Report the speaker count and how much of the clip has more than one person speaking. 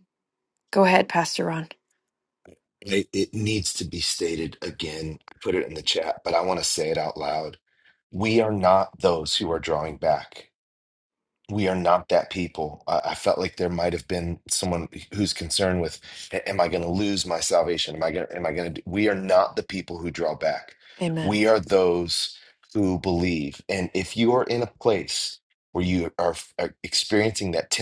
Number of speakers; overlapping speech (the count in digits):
2, under 1%